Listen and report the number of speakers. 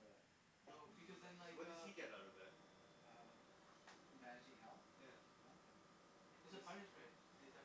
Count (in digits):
3